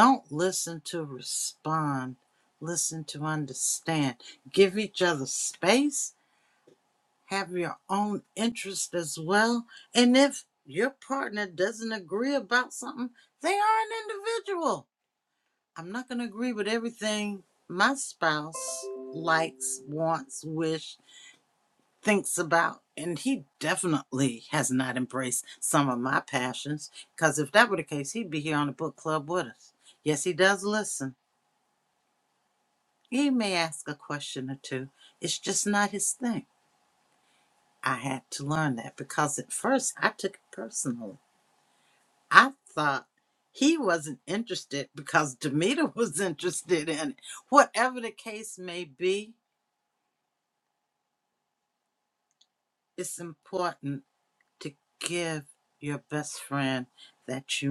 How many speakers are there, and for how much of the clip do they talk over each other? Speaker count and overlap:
1, no overlap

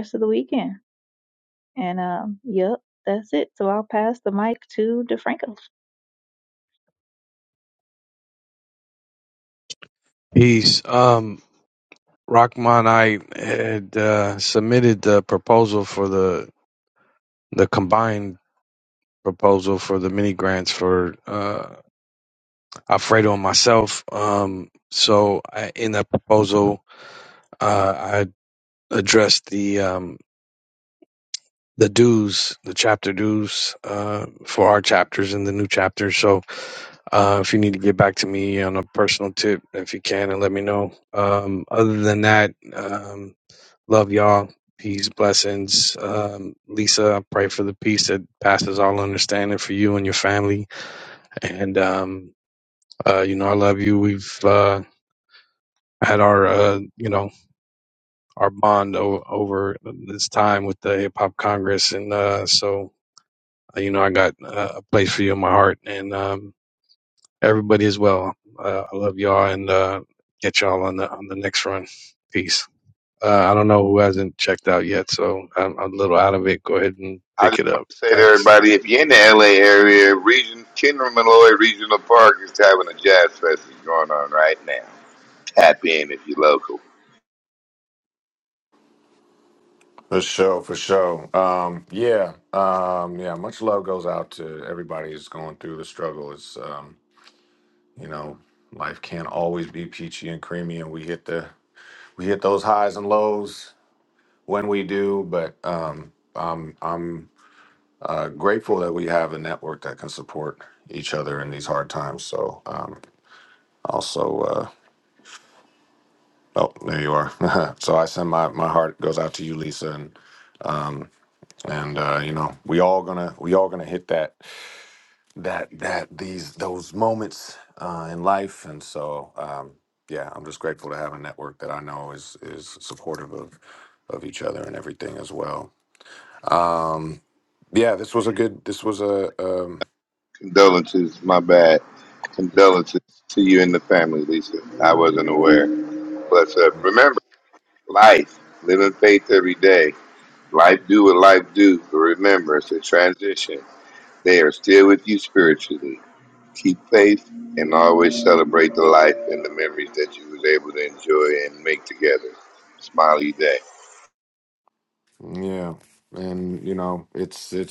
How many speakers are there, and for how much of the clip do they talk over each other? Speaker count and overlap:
4, about 1%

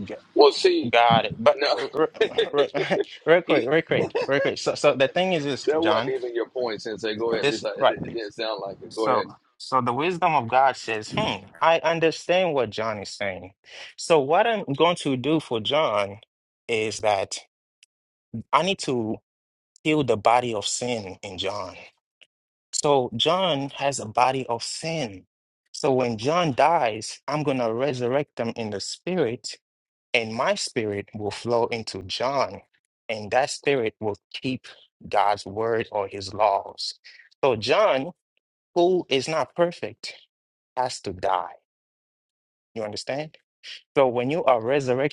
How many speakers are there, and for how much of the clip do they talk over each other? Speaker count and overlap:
2, about 4%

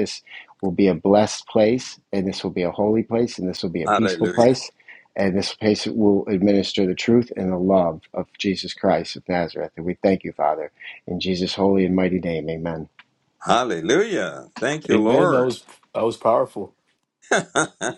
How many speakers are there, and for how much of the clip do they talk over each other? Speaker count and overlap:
3, about 7%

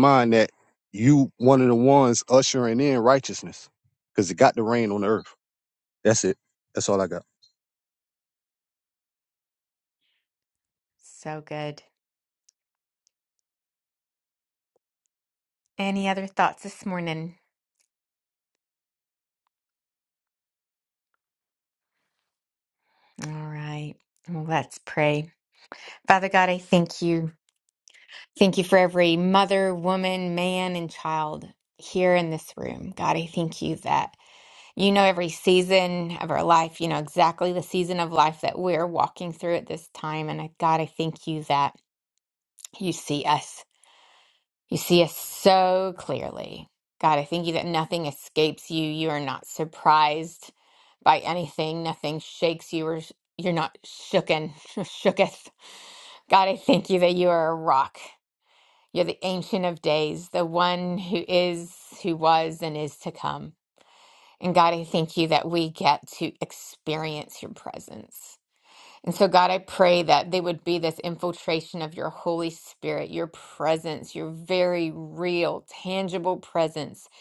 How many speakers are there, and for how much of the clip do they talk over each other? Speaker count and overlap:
2, no overlap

